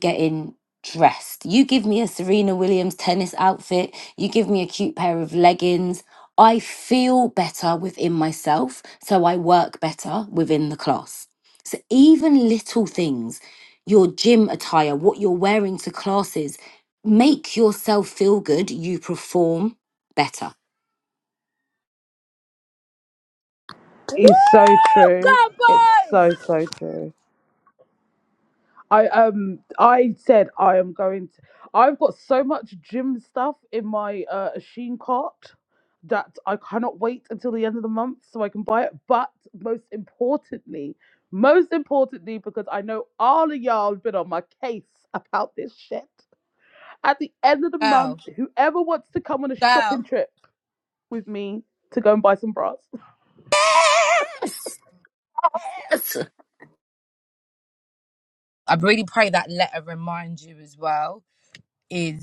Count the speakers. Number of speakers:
three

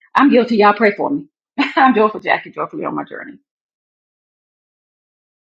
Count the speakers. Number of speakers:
one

